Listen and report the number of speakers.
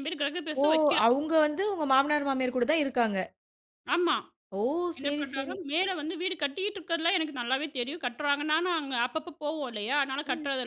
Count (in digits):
2